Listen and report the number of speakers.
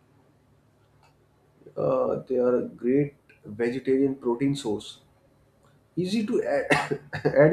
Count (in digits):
1